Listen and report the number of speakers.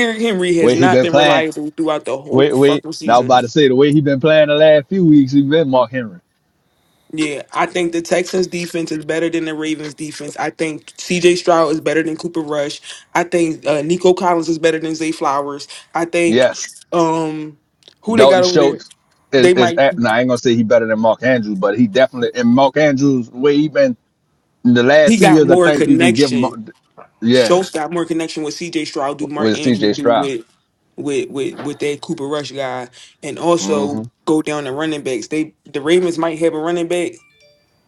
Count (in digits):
2